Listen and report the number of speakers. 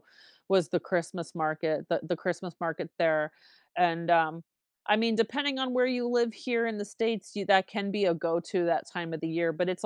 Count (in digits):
1